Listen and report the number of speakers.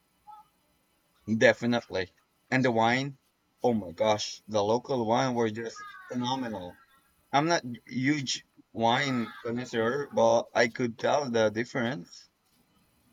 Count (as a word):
one